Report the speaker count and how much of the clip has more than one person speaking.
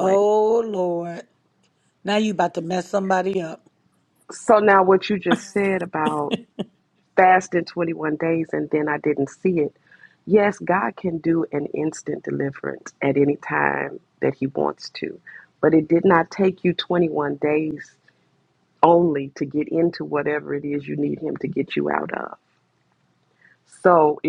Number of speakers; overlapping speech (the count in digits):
2, about 1%